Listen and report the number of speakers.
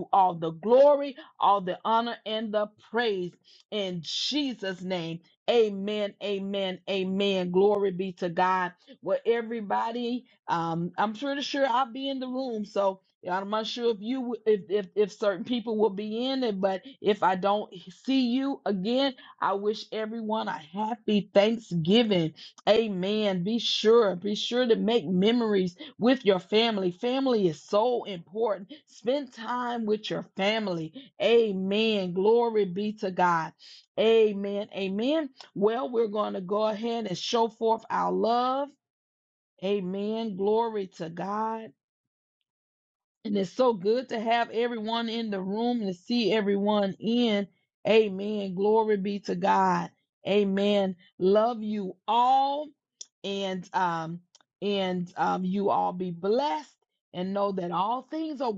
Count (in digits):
1